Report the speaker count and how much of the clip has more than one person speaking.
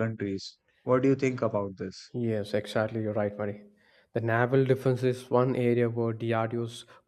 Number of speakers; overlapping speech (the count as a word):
two, no overlap